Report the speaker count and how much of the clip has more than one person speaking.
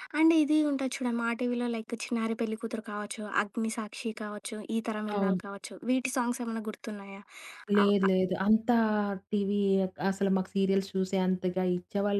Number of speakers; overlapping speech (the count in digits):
2, about 5%